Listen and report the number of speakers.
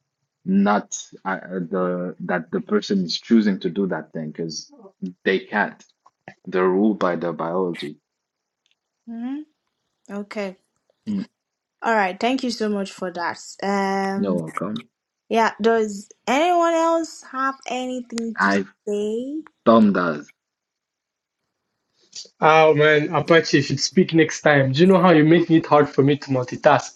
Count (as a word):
three